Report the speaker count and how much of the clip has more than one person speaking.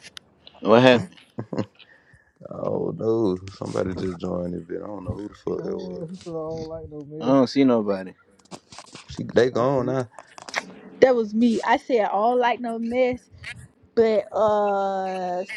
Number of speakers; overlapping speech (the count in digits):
4, about 7%